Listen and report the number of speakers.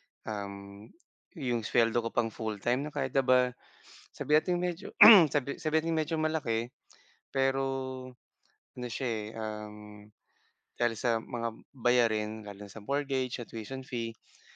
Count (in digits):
1